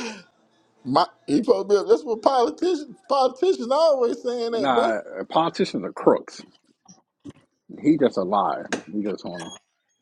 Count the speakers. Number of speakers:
2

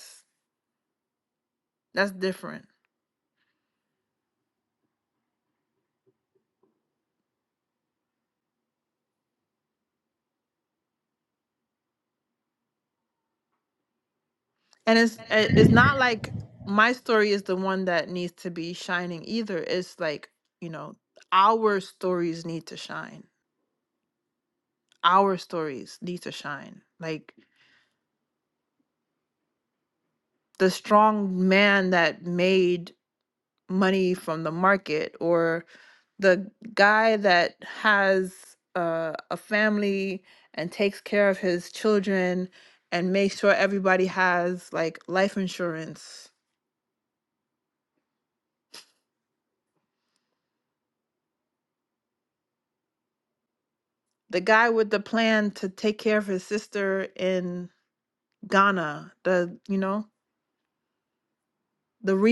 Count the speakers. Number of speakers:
1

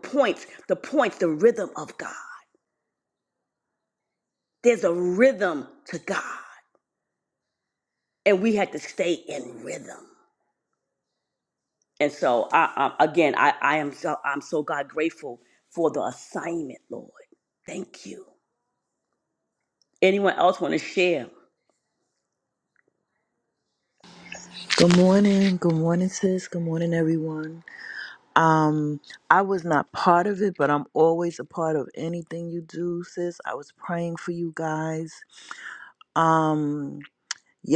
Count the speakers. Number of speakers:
2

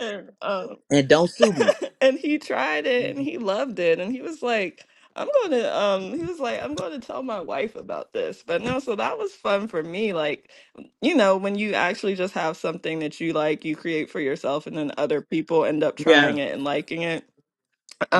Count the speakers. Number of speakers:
2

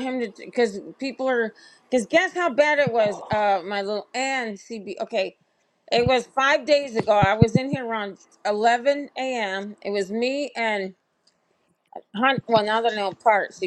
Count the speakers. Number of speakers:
1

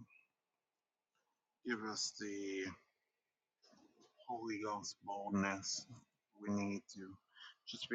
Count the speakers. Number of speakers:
1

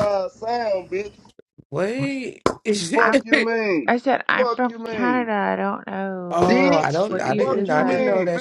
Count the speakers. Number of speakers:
3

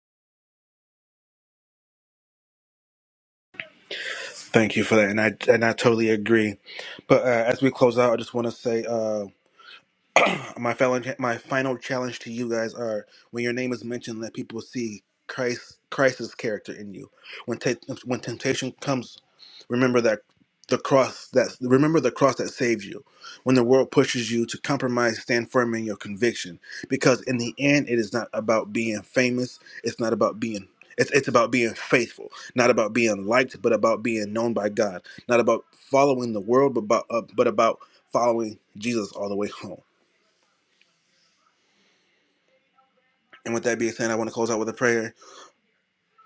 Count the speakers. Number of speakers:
1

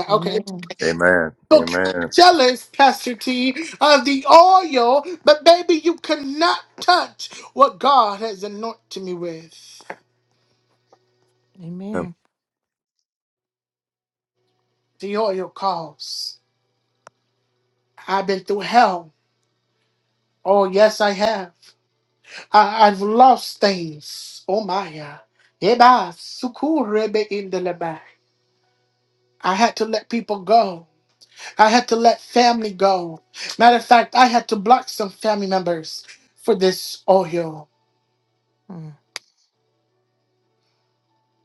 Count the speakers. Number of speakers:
3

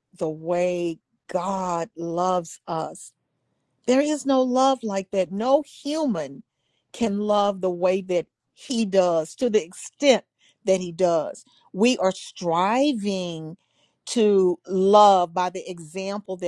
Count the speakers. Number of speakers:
1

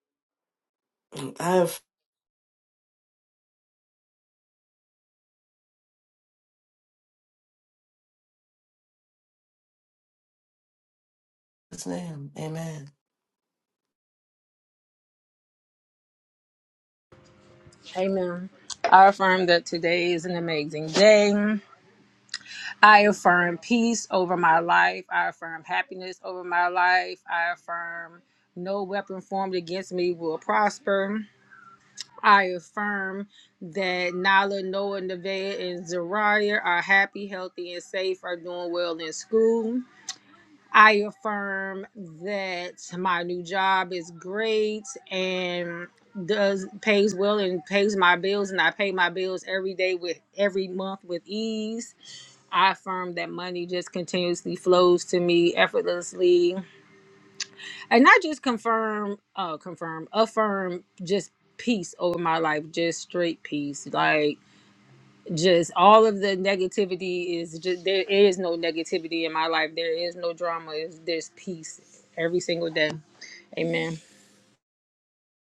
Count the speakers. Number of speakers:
2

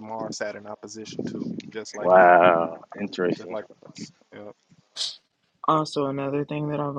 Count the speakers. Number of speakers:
3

